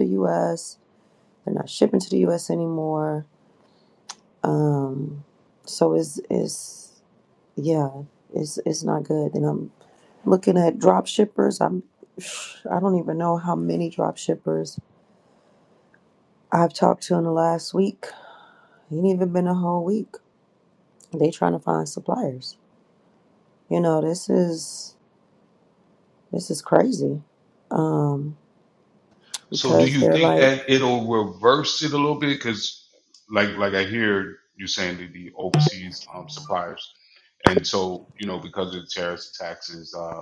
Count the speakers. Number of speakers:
2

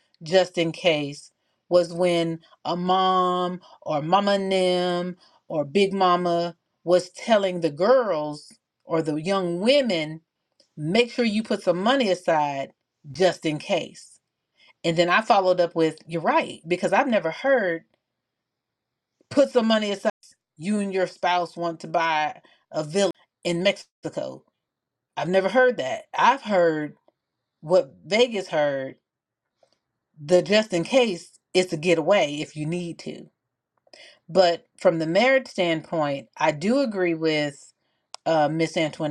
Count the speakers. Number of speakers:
1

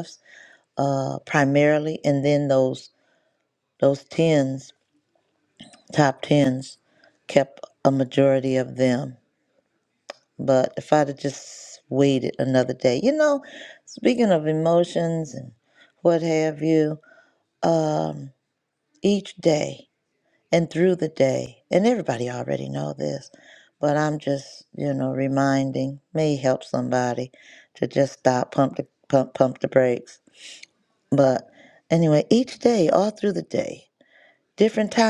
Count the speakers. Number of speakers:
1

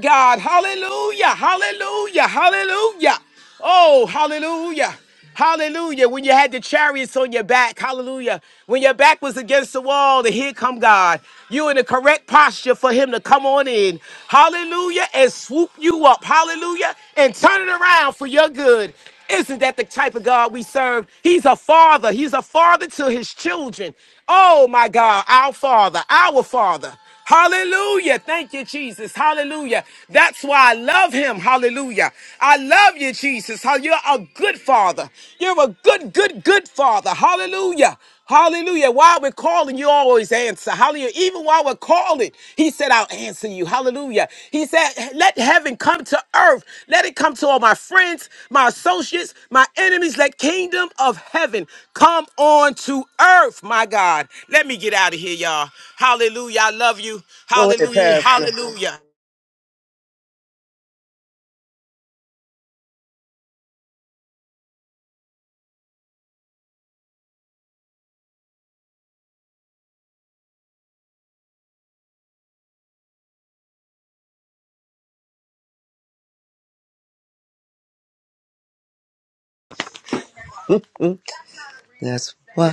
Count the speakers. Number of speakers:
2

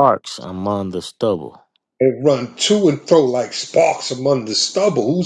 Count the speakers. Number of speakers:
2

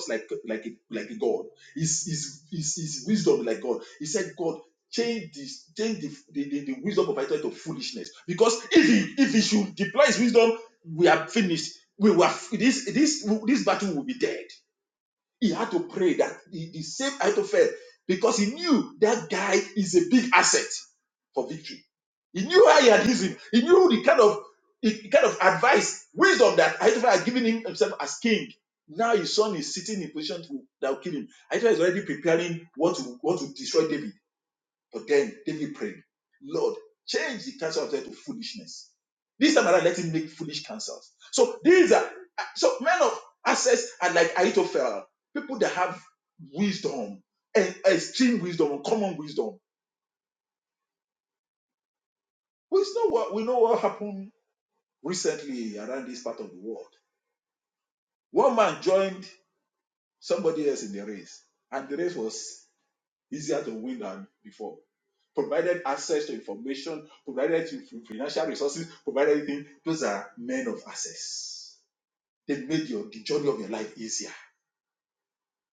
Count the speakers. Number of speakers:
1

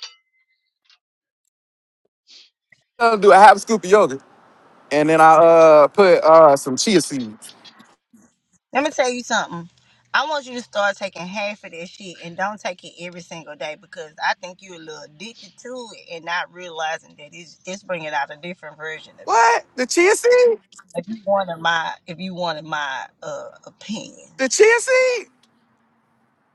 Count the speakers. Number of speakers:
2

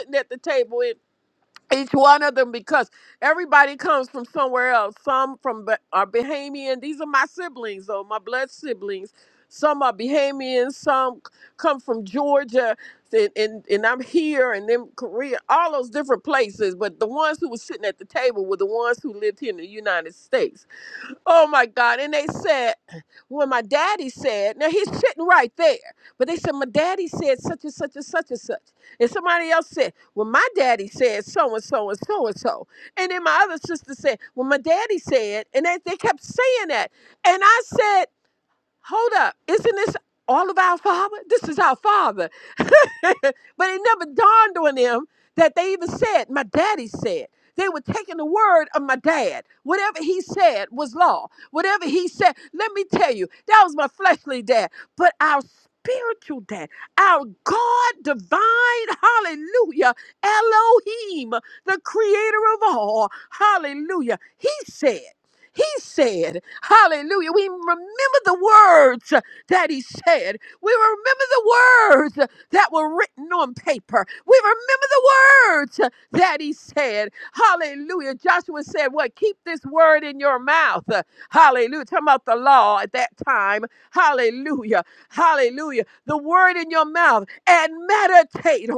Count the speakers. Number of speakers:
1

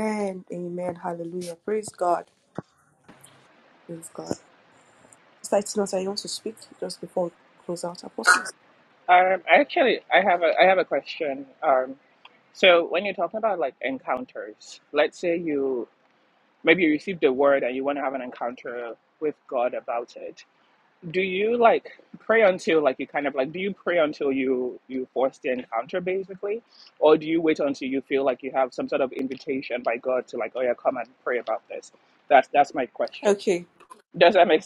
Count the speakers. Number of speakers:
2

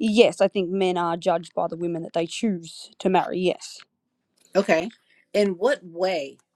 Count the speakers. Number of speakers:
2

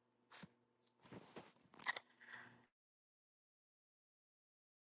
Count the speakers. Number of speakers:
0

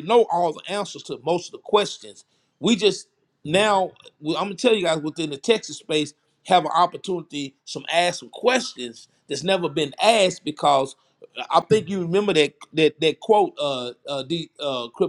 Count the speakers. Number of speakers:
1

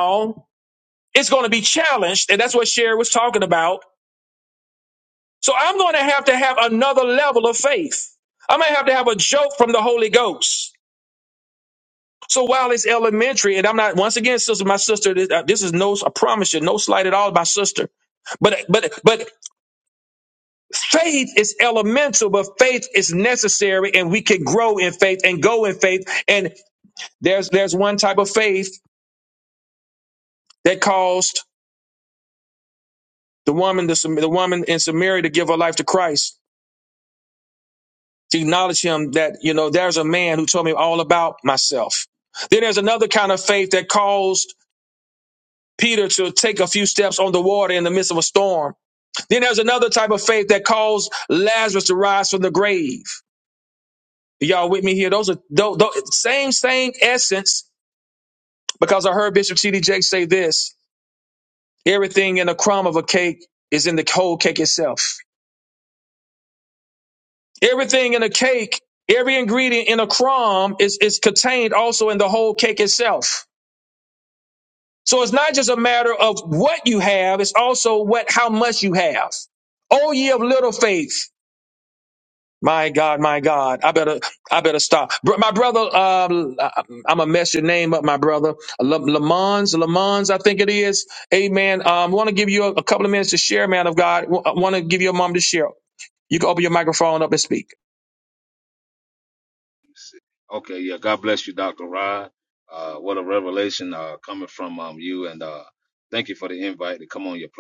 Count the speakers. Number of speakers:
2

